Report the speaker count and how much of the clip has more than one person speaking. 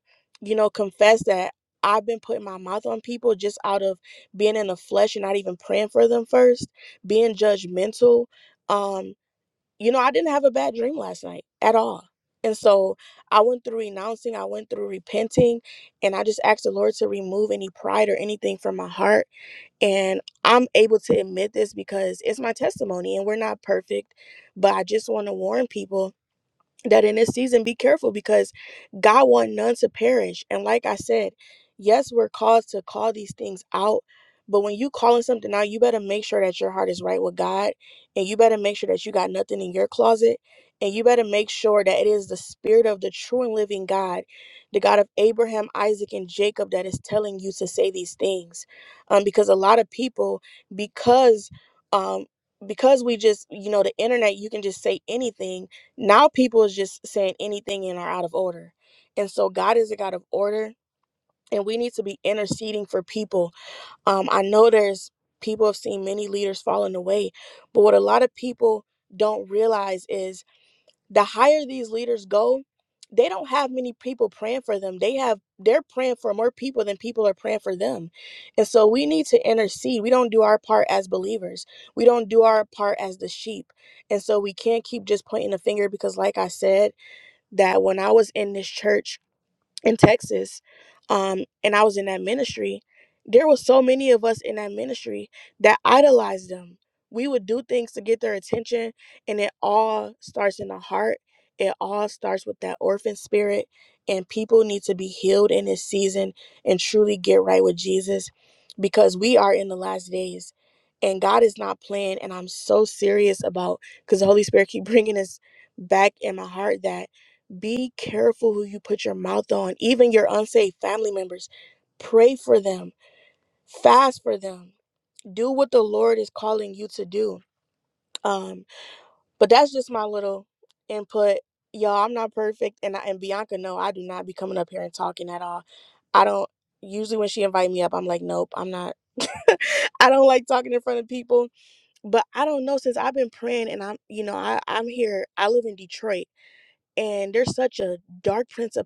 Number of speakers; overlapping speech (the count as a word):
one, no overlap